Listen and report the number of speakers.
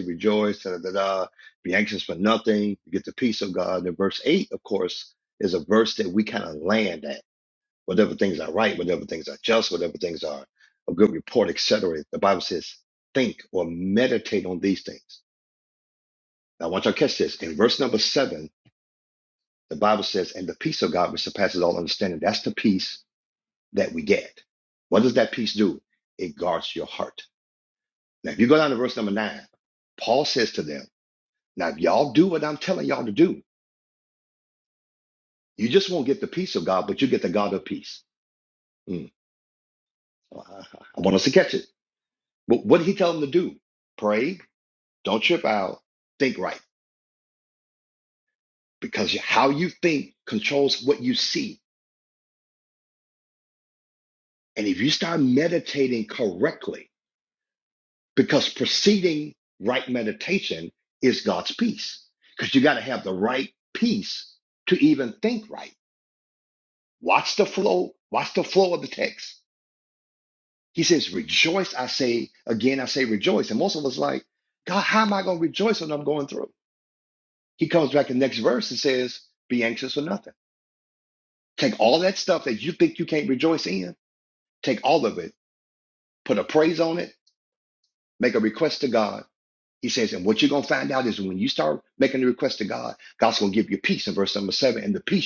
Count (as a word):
one